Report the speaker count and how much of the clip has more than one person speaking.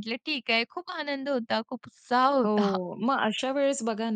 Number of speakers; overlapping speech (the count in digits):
2, about 8%